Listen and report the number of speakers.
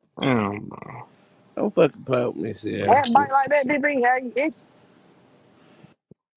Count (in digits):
3